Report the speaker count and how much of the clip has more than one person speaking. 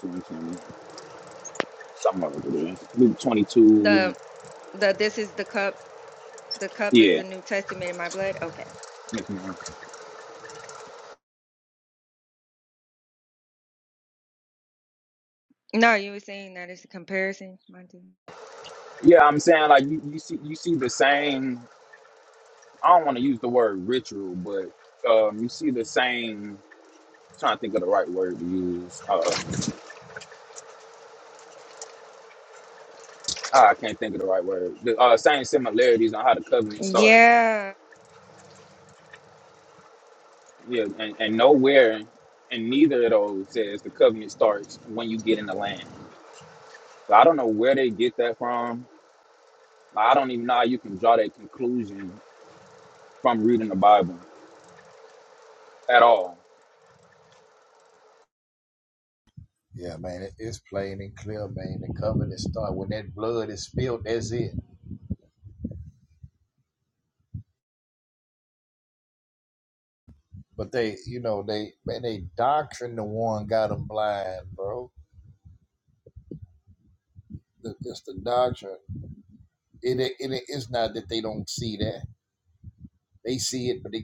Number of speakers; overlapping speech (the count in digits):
3, about 1%